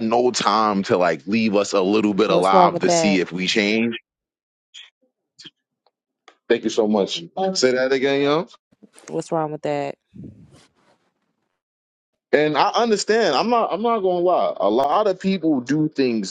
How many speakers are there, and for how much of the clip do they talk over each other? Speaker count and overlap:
2, about 6%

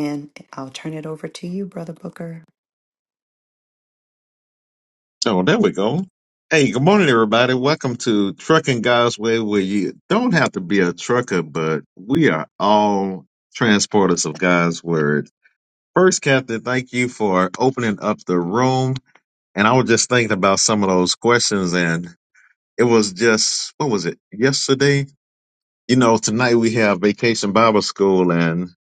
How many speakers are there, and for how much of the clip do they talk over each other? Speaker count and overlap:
2, no overlap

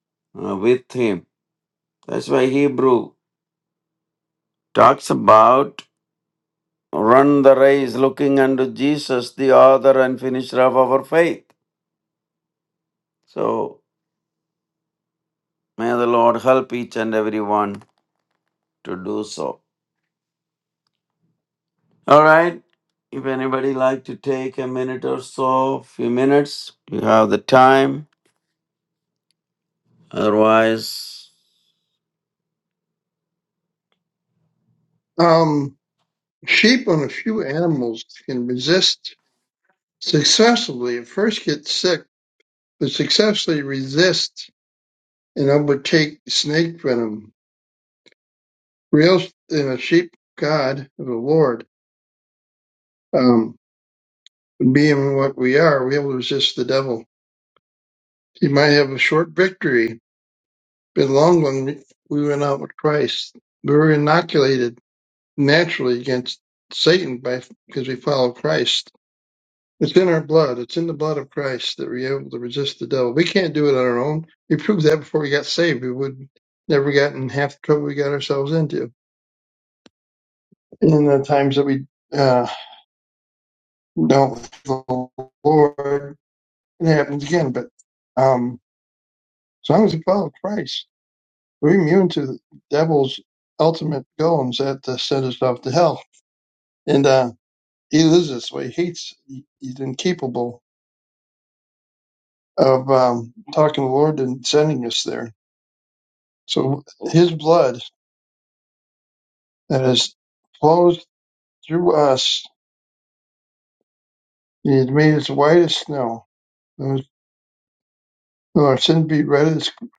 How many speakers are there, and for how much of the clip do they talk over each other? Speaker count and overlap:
2, no overlap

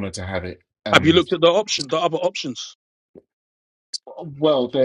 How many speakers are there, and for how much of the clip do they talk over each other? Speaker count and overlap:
2, about 5%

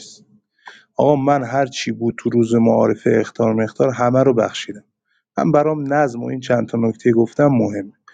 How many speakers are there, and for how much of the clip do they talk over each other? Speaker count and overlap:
1, no overlap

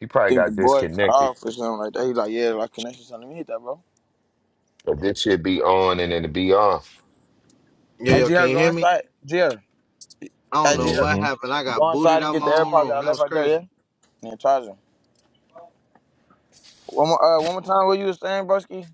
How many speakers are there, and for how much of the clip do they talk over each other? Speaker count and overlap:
3, about 22%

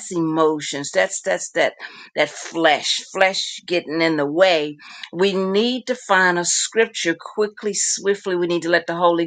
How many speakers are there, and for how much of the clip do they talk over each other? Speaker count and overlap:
1, no overlap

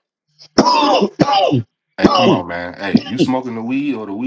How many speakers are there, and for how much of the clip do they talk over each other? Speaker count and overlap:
2, about 9%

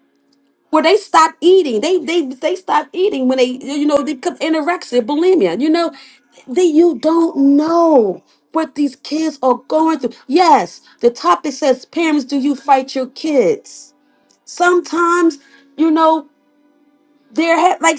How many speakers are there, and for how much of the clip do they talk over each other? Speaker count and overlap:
1, no overlap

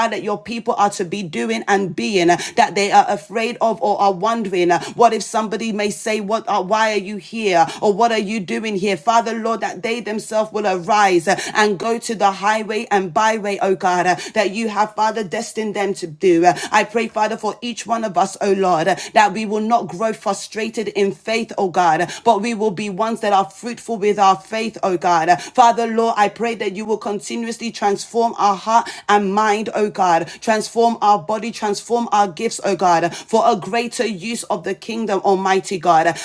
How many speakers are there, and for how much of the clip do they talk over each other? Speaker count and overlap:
1, no overlap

